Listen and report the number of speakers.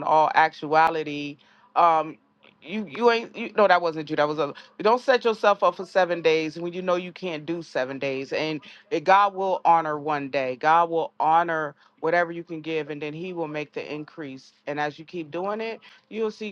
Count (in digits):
1